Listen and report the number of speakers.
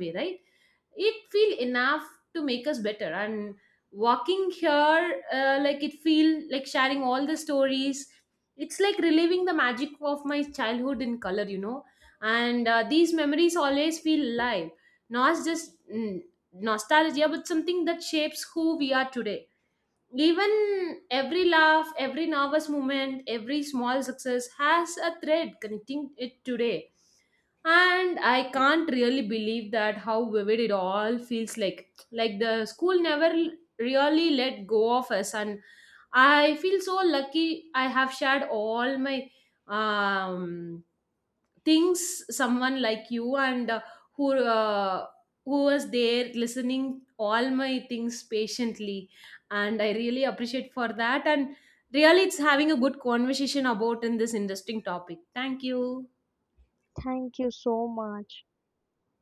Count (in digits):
2